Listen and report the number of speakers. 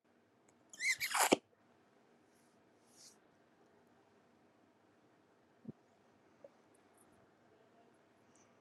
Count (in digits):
0